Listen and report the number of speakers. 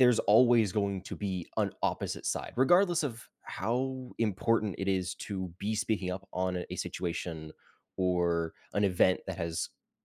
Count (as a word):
one